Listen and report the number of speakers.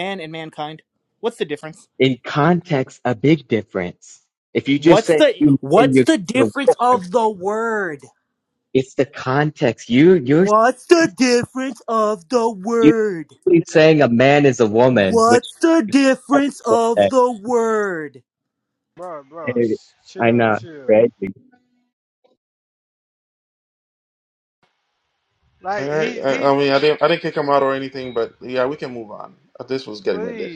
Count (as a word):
four